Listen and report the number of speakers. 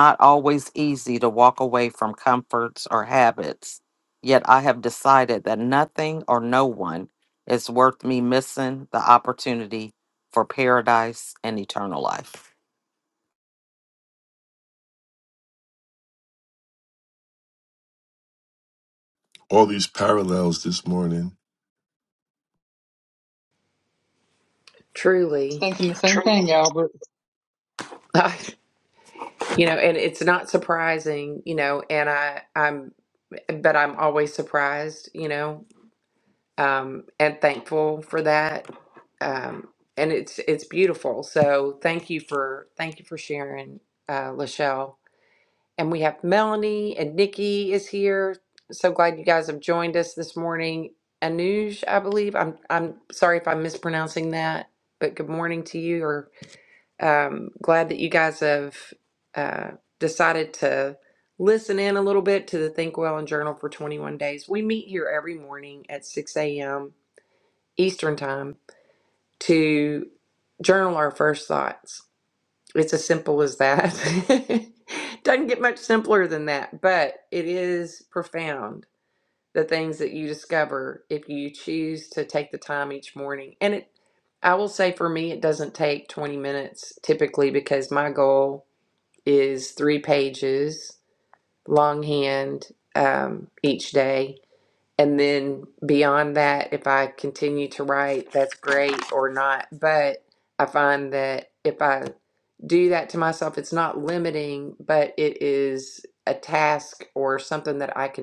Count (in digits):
4